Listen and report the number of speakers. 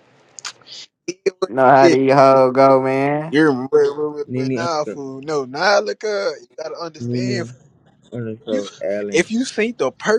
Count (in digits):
3